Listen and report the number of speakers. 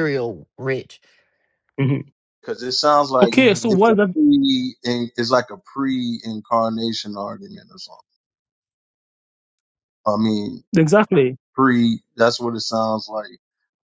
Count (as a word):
three